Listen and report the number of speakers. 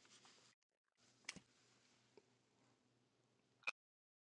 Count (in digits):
0